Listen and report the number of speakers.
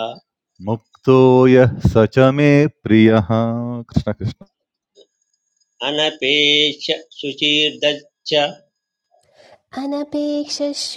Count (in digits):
3